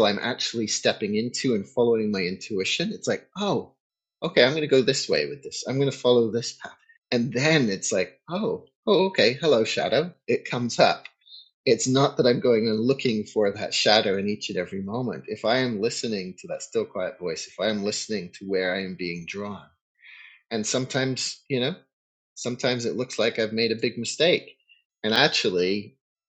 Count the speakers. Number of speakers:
1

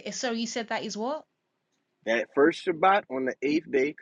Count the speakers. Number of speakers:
2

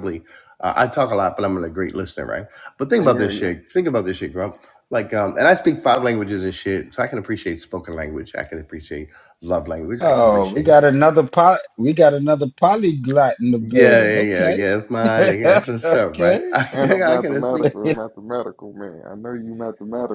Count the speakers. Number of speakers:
3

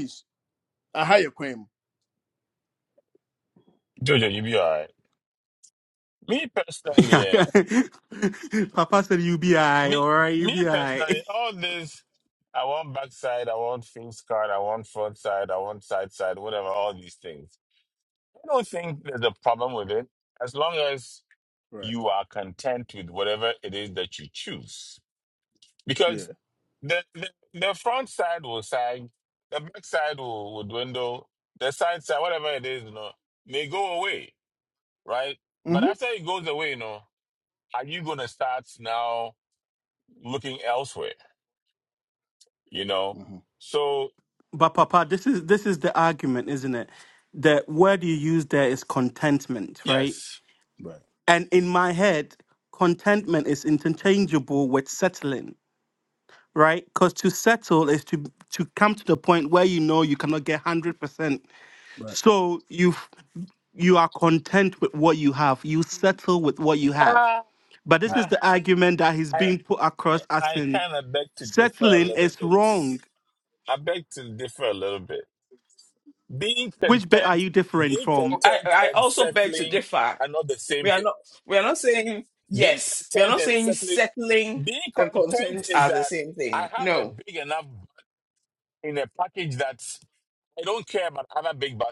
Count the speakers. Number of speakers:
4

